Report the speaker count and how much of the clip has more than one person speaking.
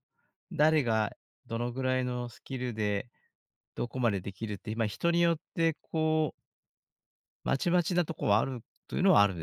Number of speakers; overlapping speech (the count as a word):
one, no overlap